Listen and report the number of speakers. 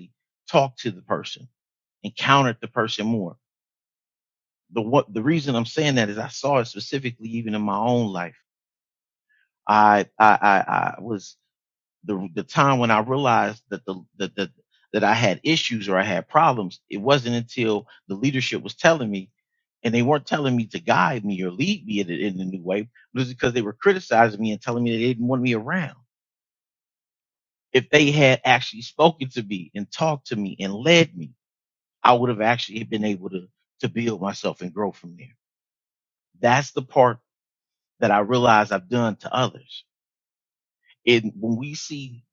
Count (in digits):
1